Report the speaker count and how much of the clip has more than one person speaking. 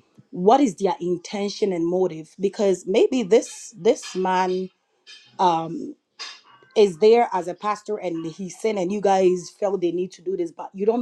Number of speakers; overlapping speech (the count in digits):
1, no overlap